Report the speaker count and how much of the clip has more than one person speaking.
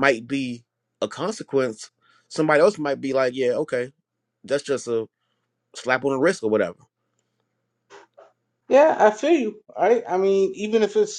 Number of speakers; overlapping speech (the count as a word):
two, no overlap